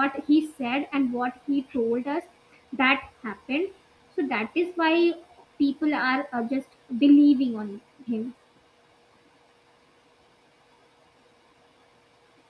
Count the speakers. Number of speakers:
one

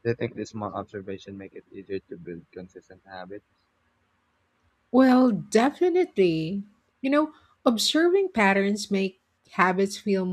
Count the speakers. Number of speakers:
two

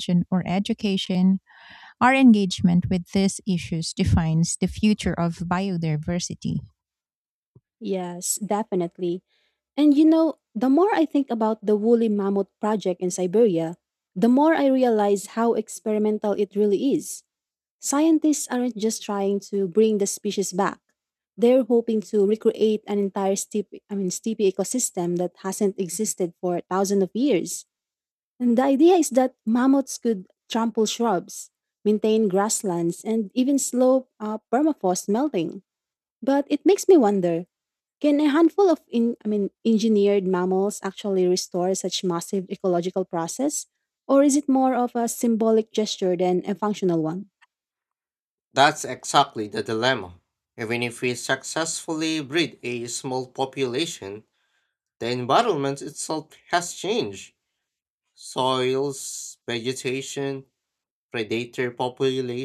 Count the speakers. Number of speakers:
three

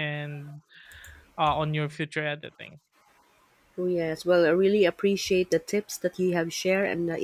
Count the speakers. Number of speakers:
two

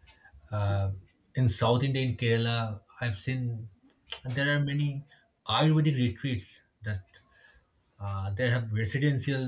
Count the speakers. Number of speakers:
one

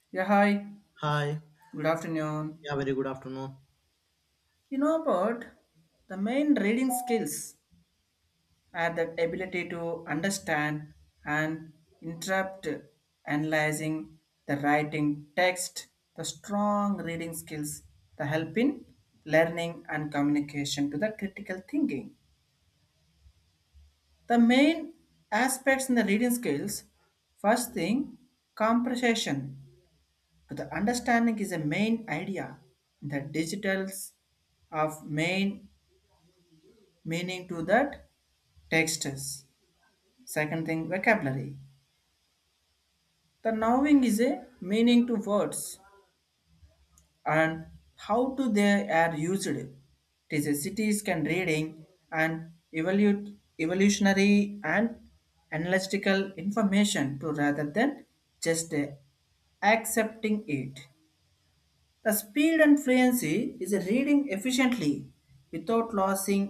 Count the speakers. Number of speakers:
two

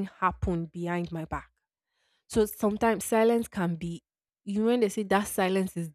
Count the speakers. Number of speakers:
one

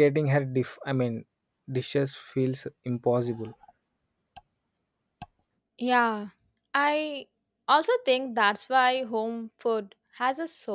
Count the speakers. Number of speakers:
two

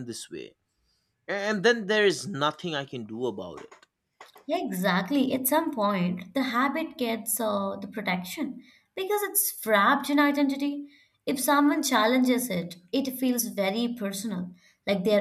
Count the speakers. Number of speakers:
two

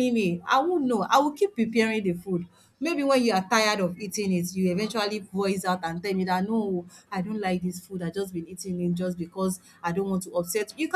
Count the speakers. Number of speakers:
one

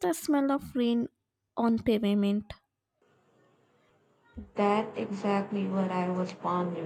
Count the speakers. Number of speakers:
two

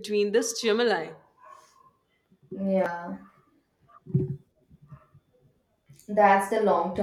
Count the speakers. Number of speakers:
two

